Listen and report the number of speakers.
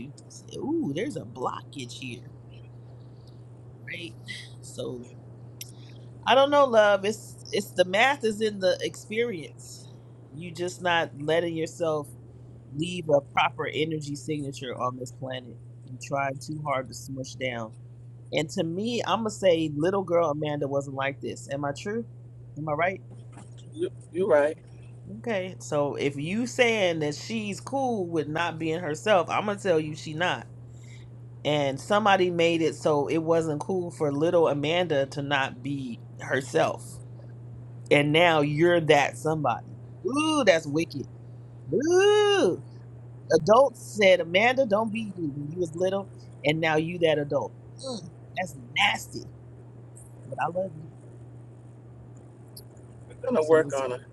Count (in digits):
2